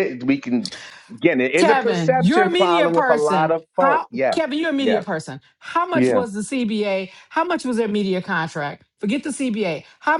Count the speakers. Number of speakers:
2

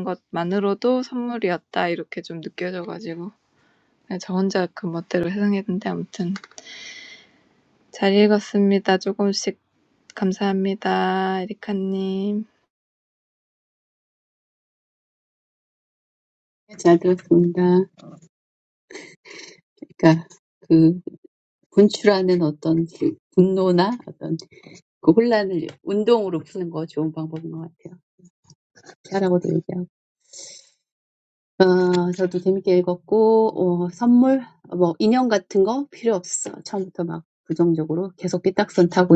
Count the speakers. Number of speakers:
2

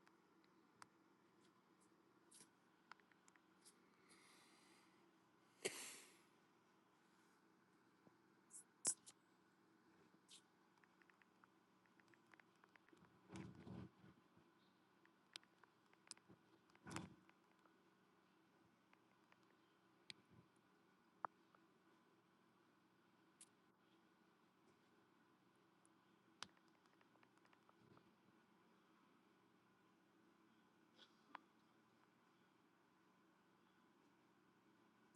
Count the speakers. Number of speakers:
0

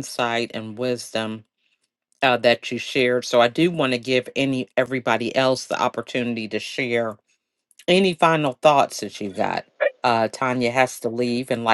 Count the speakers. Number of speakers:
1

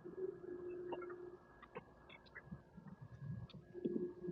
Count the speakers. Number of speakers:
0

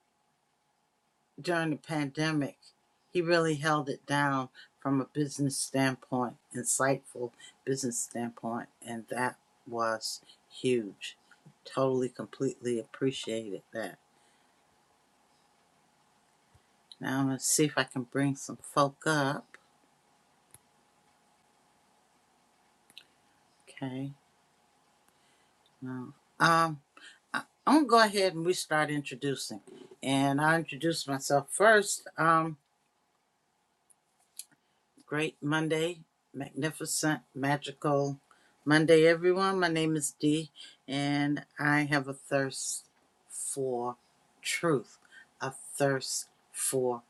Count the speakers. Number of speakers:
1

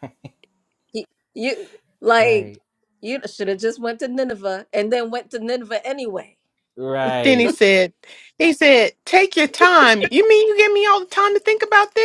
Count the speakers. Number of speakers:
3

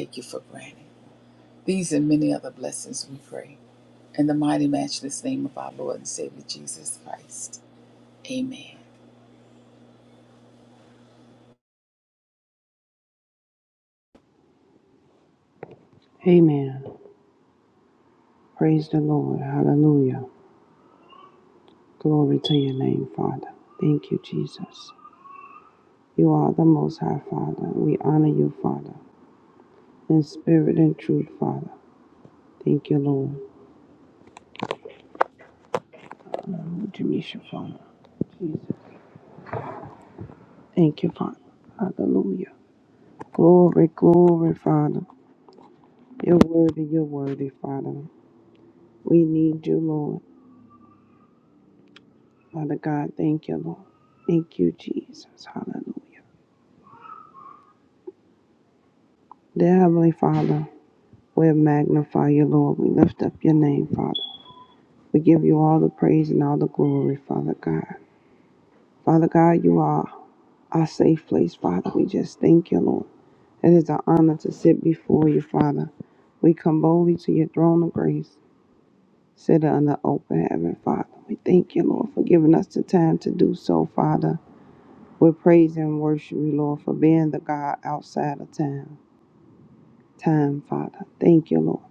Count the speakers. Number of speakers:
2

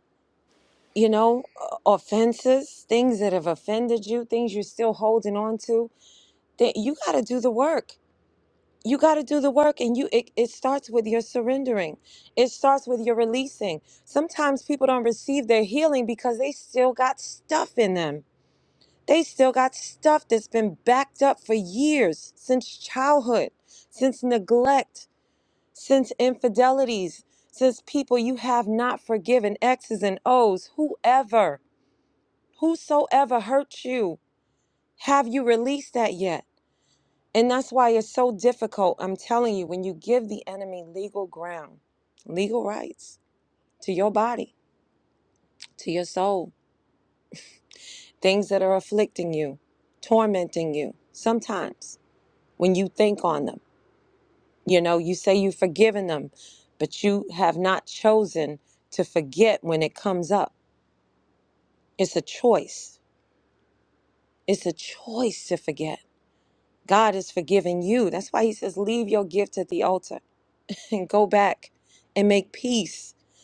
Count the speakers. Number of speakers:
1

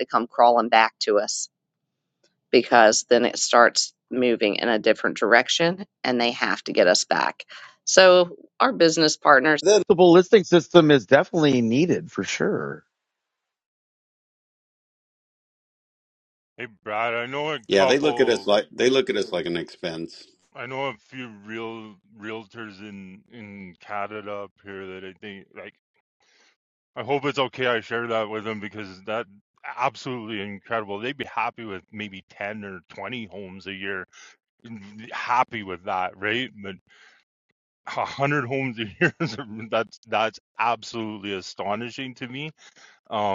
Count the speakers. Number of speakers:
4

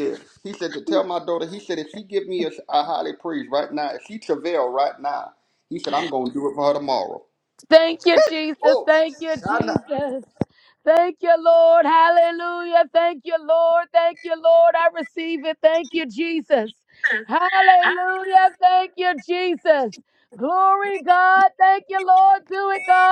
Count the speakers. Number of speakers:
2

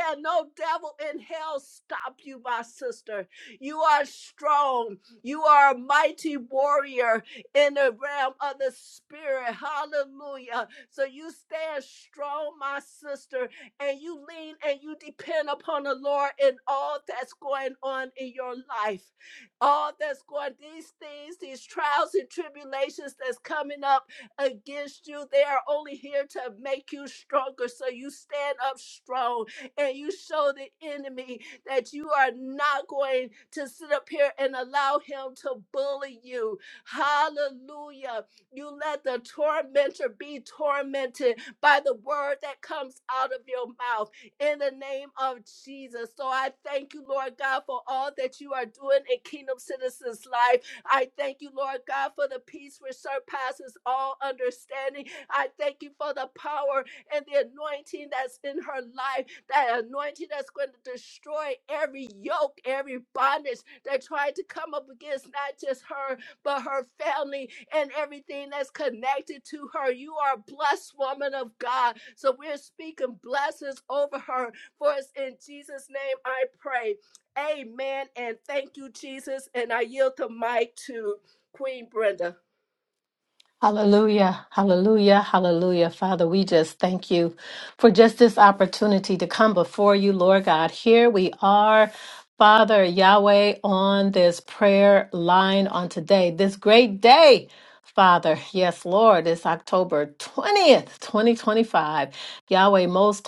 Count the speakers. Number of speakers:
2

